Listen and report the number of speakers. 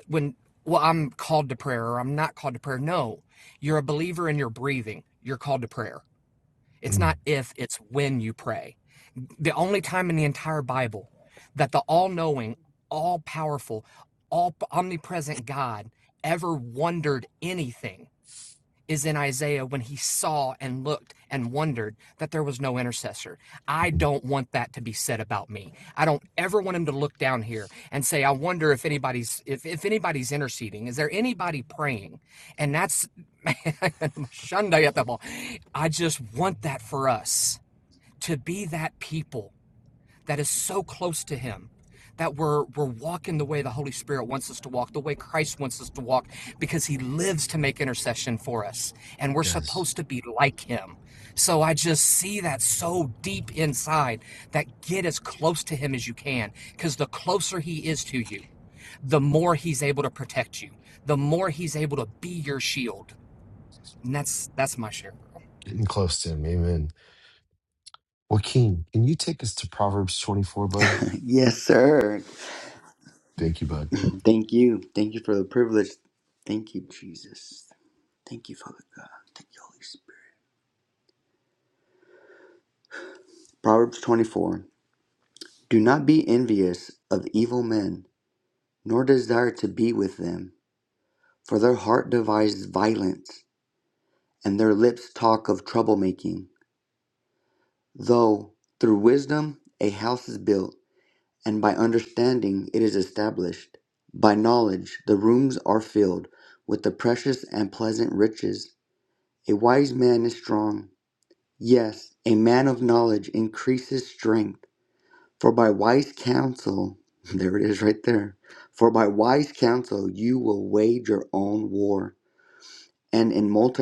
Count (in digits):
3